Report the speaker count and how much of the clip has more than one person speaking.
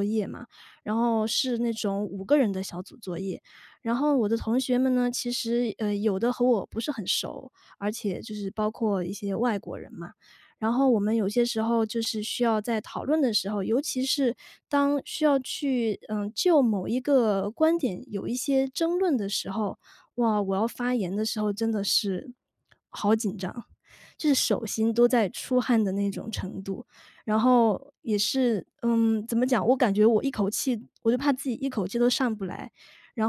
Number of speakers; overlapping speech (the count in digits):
1, no overlap